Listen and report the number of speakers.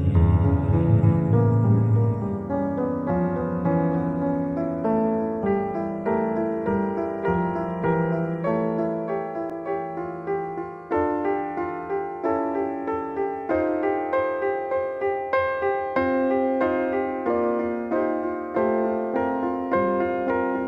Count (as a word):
zero